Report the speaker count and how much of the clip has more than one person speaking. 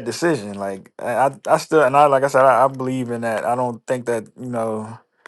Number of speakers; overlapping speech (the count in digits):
1, no overlap